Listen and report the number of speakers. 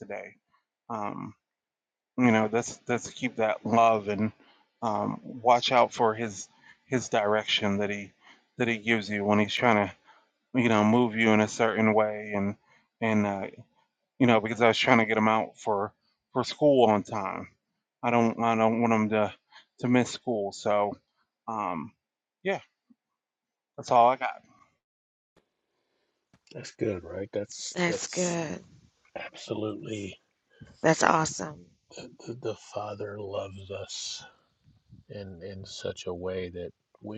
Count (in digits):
3